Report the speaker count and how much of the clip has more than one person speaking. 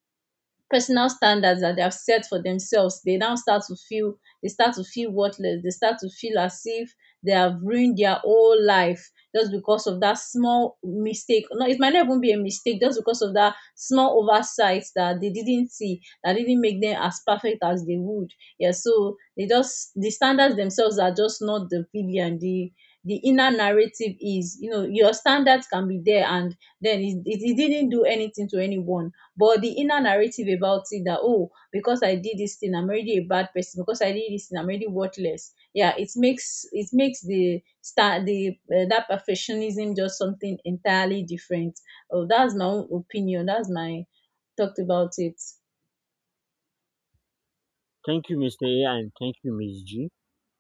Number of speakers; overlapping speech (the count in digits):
2, no overlap